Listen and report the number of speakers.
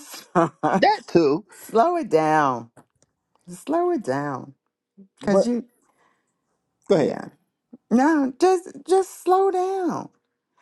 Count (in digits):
2